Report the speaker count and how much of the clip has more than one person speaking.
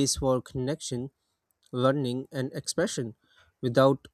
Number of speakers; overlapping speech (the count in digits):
1, no overlap